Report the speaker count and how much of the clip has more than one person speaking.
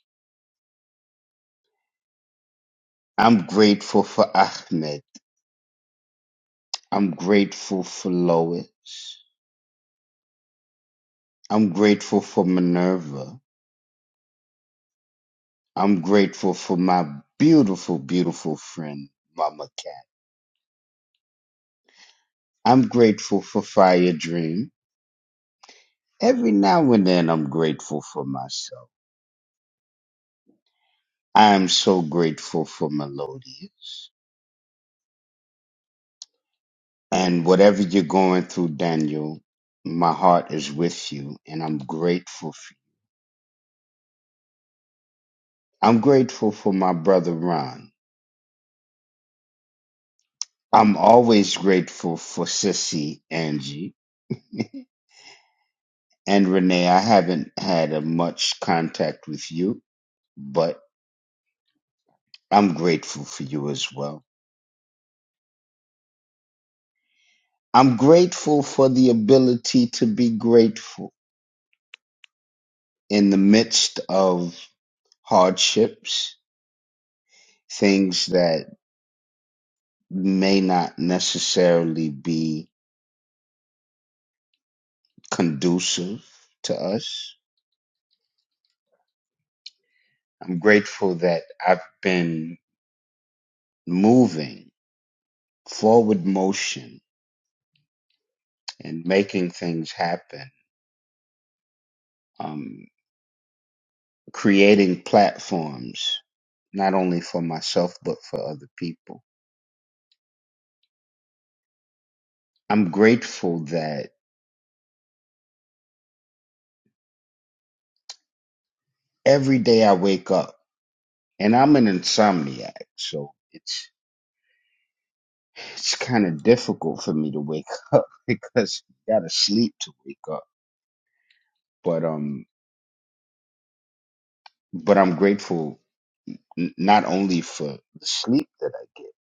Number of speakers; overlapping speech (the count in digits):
1, no overlap